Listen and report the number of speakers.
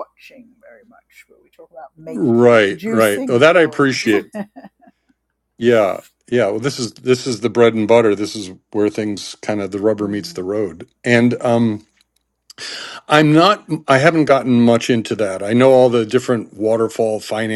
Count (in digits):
2